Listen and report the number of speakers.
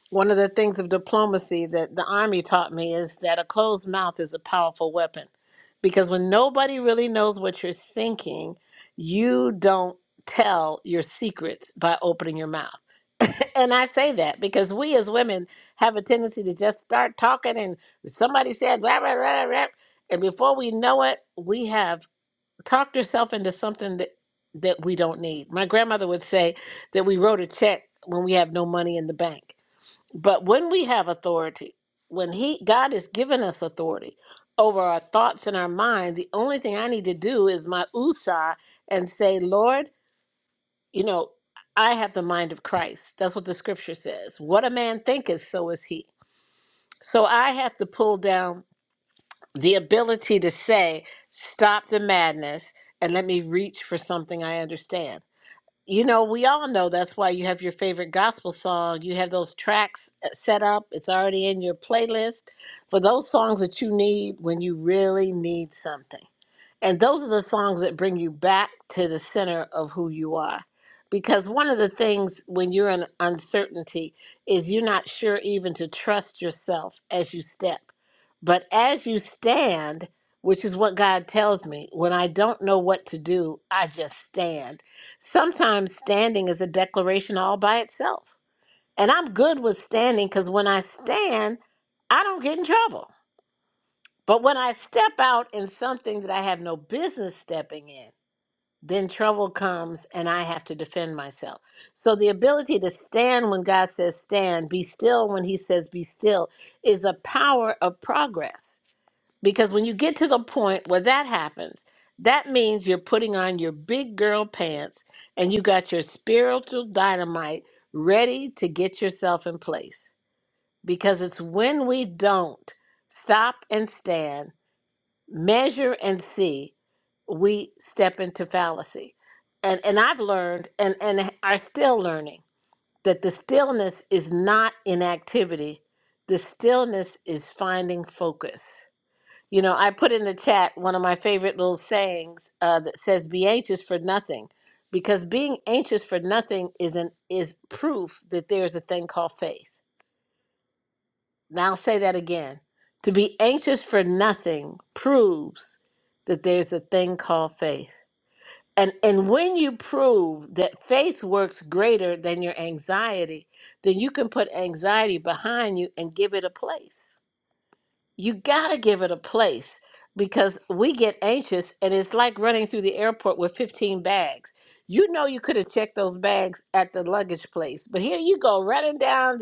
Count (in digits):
1